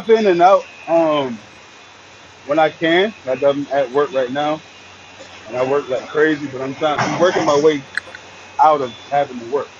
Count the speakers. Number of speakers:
1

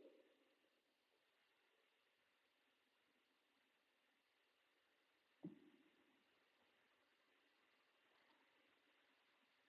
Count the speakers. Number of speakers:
0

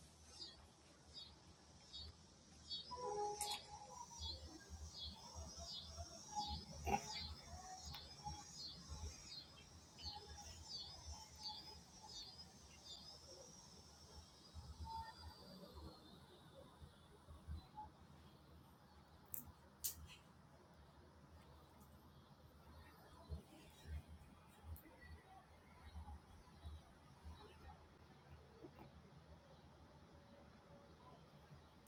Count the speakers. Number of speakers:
0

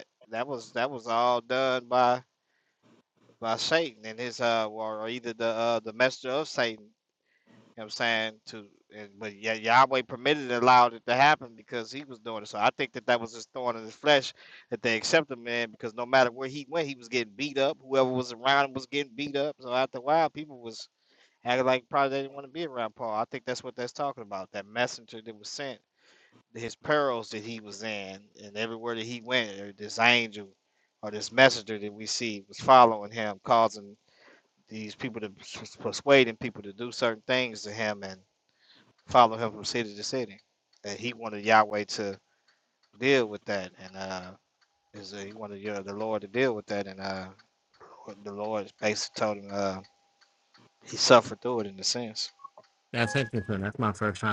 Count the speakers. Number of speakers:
2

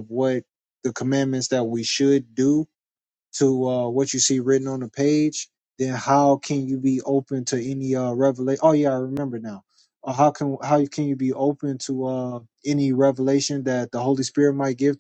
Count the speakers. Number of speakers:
1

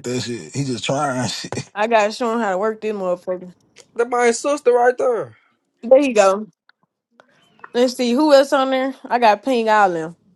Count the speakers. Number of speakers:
3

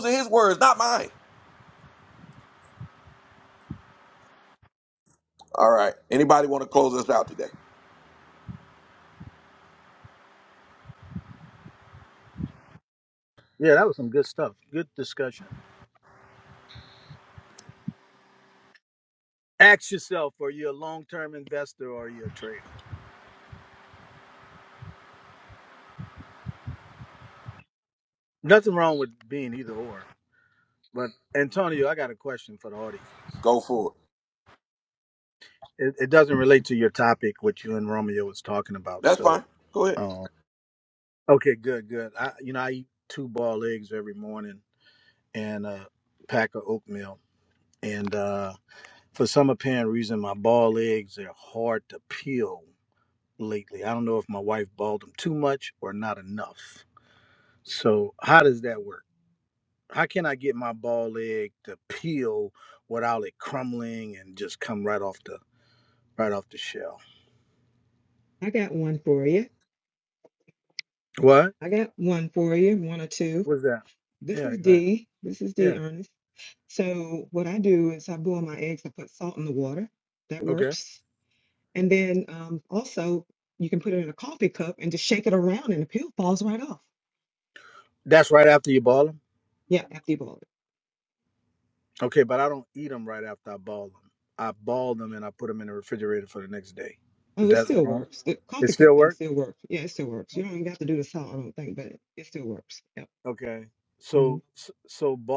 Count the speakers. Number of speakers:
3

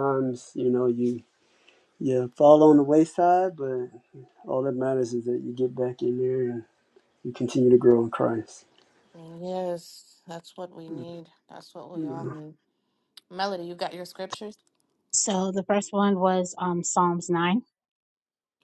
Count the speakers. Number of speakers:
3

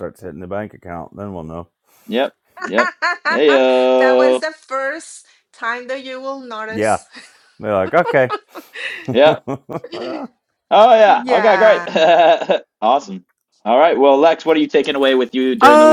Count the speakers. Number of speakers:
3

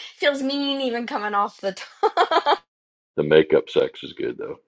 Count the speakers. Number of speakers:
2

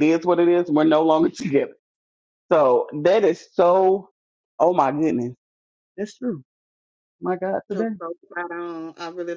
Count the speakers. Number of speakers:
2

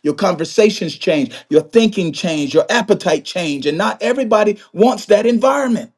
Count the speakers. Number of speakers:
1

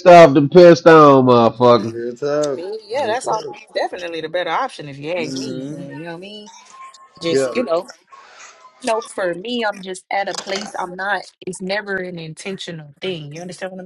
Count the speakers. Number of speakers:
3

